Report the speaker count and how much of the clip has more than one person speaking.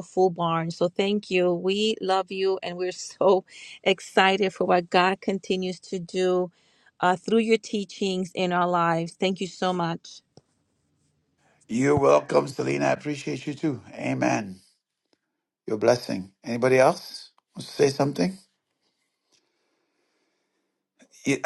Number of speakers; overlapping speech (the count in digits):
2, no overlap